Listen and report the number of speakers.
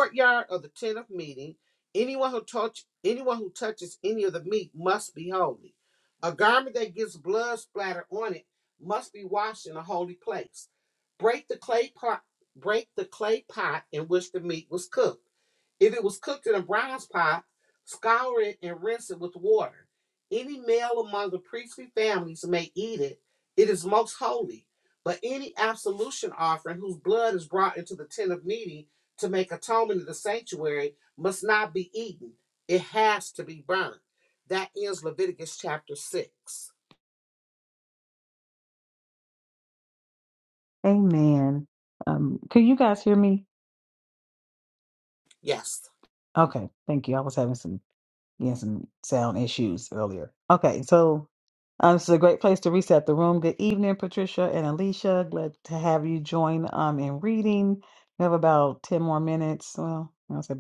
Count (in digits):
2